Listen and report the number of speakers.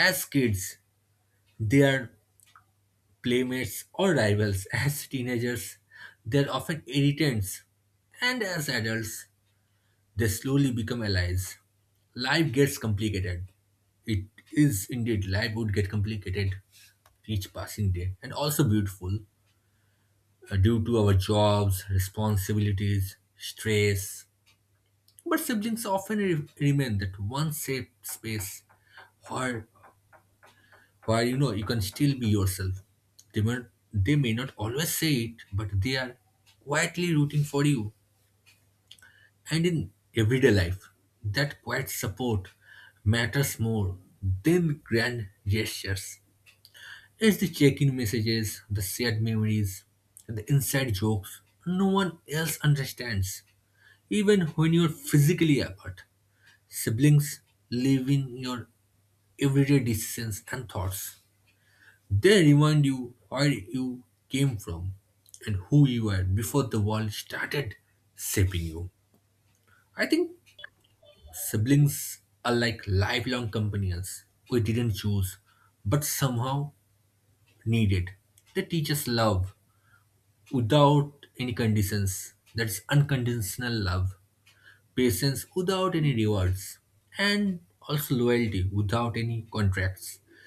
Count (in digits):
1